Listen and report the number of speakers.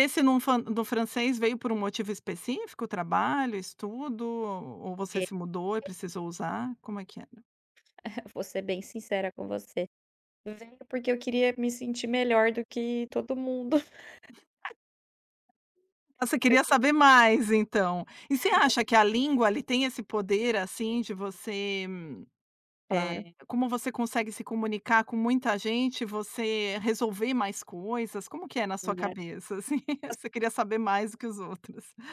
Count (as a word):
two